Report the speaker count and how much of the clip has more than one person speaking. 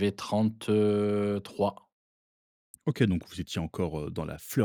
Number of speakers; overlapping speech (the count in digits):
2, no overlap